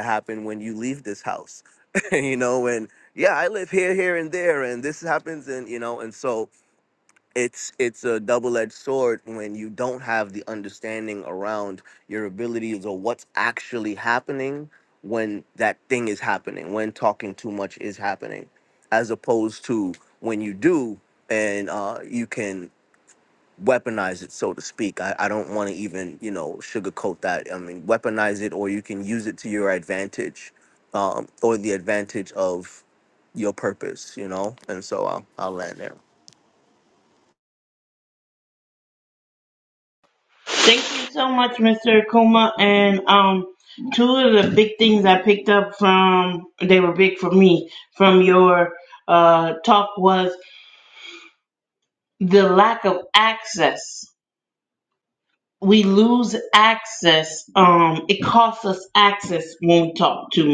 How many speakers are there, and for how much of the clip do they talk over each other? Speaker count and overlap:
two, no overlap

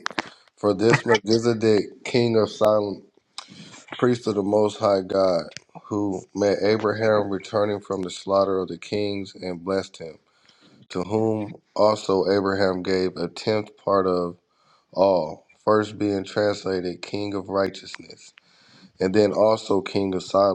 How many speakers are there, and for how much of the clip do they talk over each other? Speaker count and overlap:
one, no overlap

